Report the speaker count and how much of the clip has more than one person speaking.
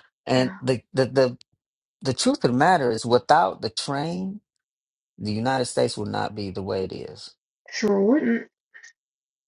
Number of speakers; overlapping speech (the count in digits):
2, about 3%